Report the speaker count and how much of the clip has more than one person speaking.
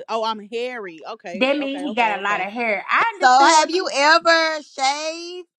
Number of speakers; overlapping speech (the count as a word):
three, about 32%